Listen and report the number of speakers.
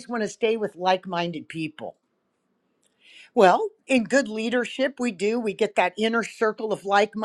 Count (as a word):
one